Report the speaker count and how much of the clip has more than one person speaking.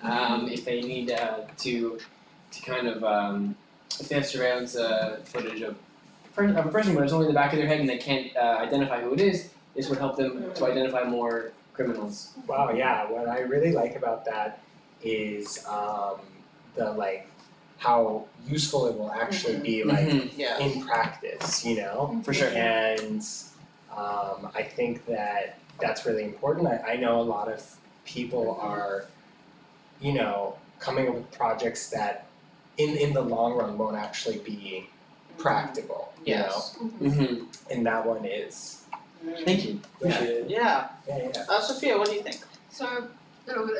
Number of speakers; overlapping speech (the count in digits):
4, about 10%